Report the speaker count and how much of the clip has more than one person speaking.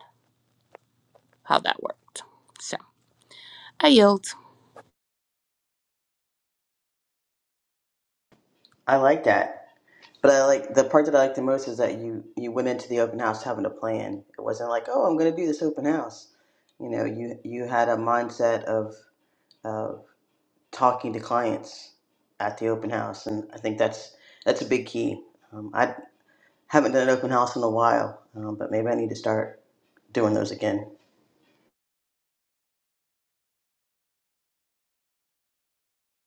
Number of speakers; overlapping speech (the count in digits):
2, no overlap